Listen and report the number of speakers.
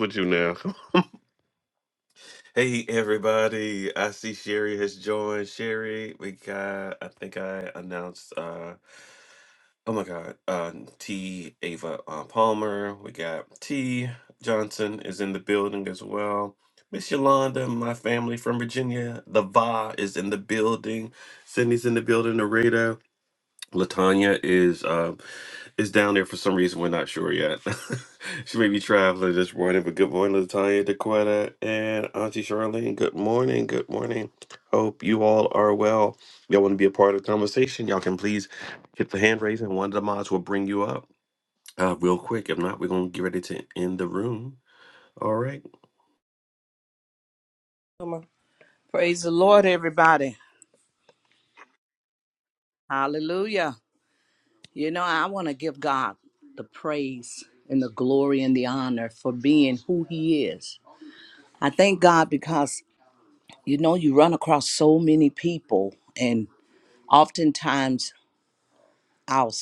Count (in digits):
2